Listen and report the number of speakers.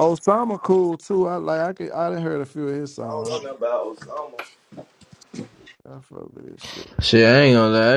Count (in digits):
3